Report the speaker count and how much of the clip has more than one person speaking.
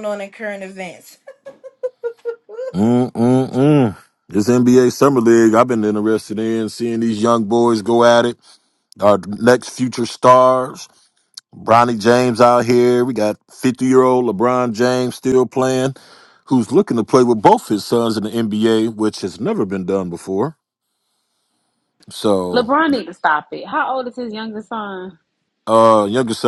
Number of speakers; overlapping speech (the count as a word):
three, about 1%